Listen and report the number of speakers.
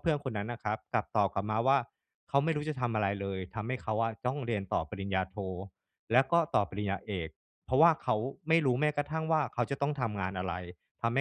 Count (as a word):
one